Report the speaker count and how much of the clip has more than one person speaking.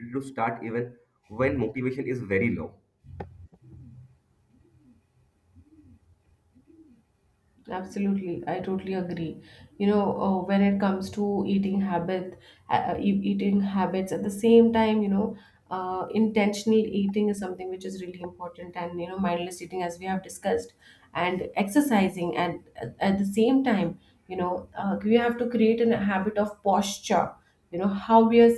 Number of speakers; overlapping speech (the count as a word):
two, no overlap